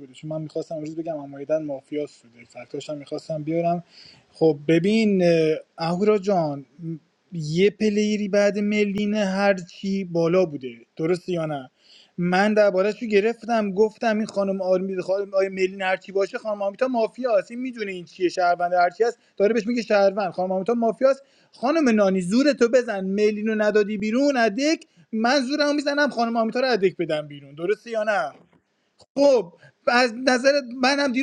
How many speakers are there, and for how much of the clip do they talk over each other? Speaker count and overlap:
one, no overlap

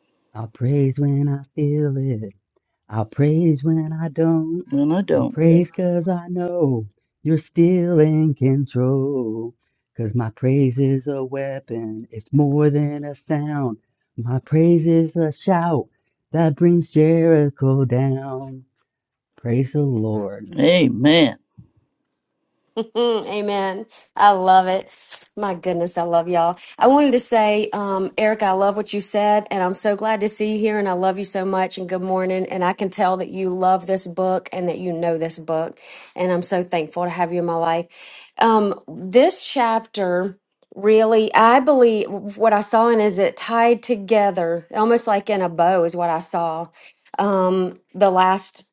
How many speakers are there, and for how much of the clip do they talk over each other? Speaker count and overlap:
three, under 1%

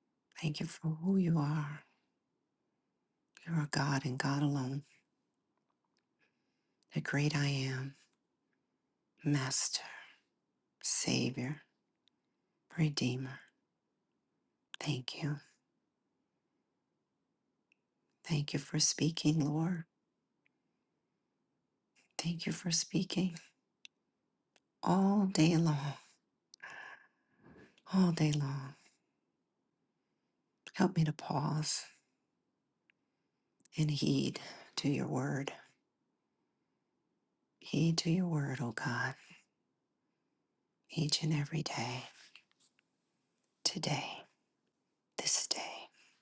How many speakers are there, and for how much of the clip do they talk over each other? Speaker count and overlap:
one, no overlap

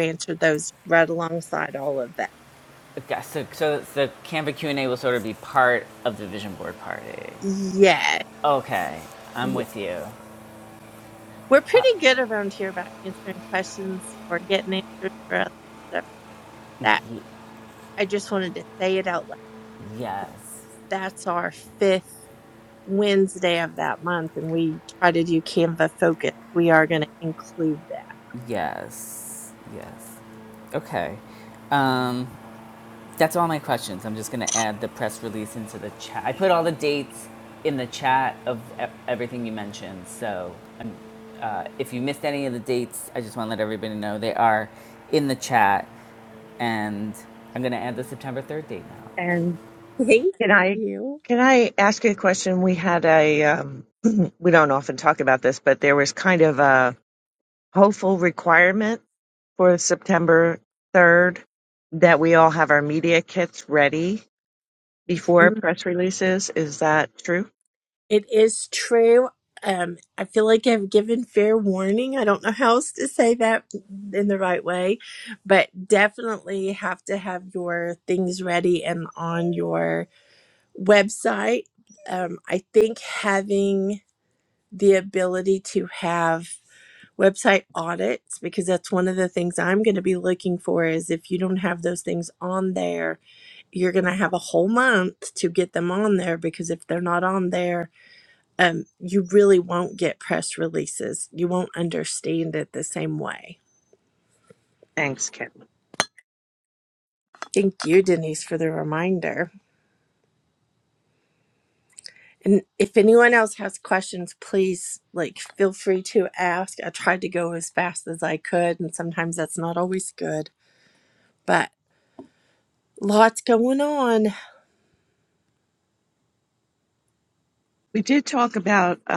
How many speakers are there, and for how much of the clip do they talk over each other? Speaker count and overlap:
three, under 1%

